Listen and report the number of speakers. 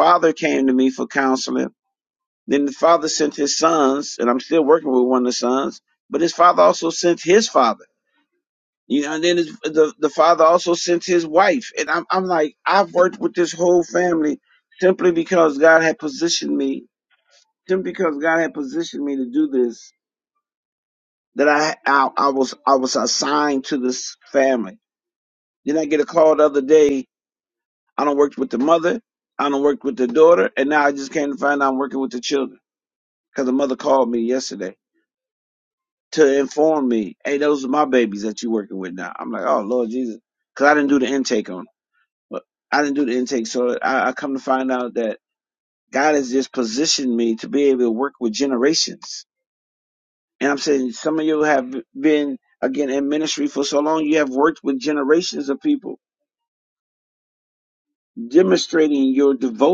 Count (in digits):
1